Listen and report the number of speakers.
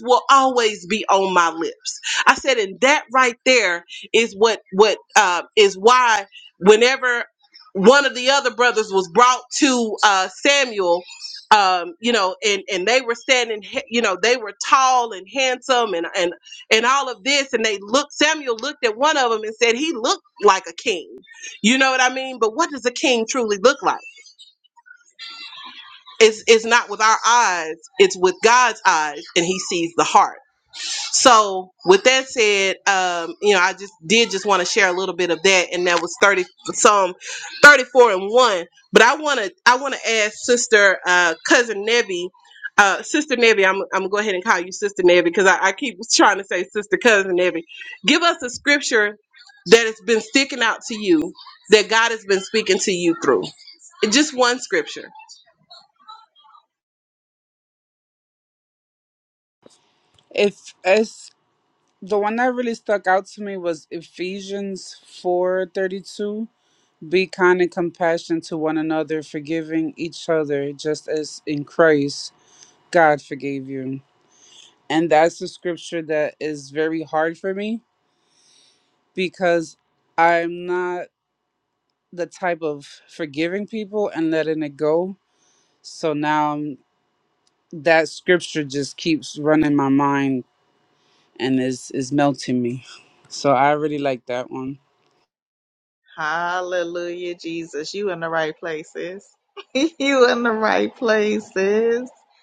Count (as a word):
three